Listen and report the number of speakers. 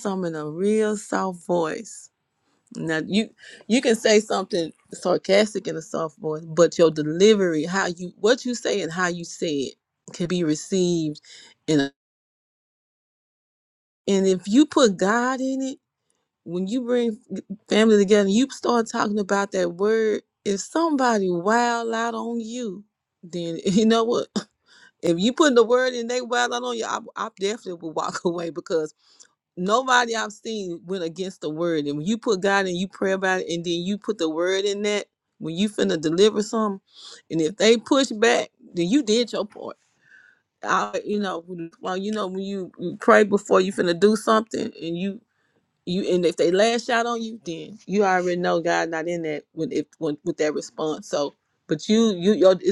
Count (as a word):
one